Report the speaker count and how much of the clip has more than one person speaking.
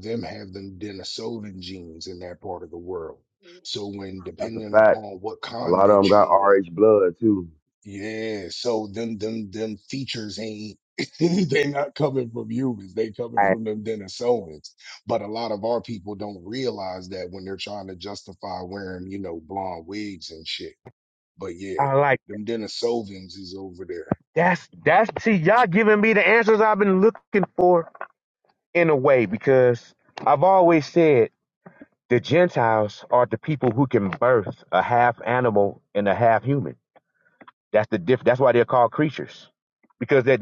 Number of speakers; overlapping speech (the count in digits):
3, about 5%